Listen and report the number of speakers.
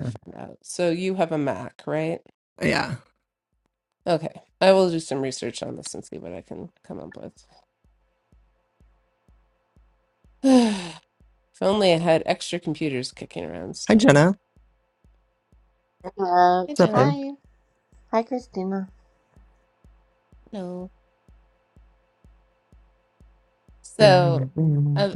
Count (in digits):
3